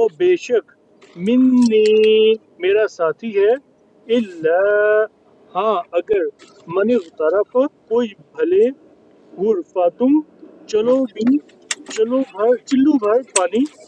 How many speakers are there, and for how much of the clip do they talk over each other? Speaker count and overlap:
one, no overlap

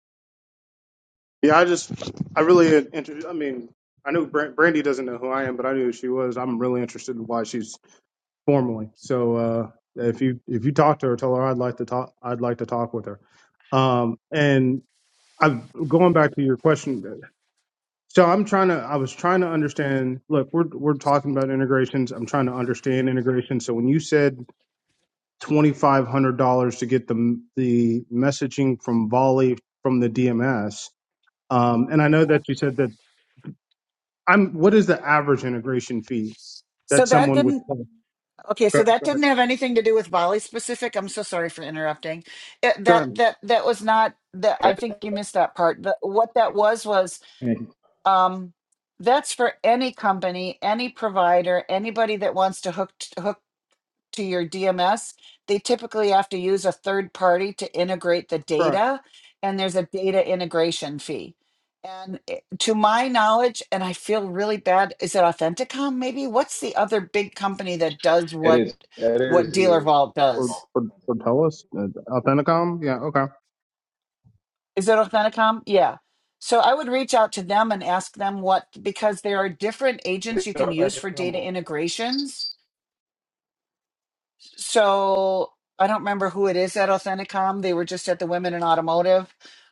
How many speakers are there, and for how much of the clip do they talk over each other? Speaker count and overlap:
three, about 3%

